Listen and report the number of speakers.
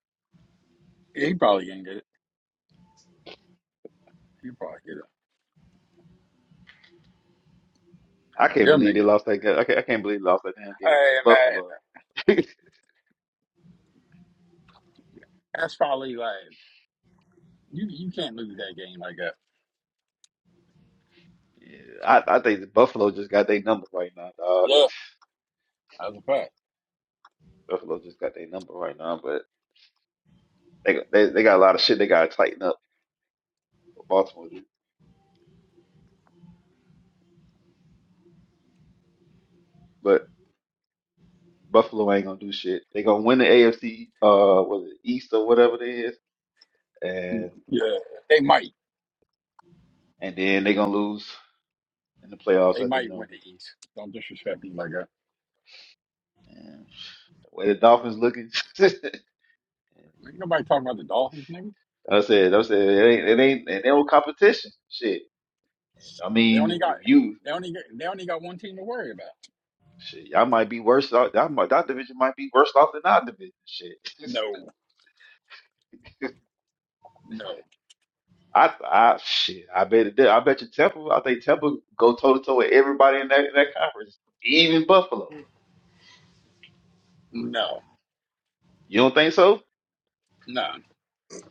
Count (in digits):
2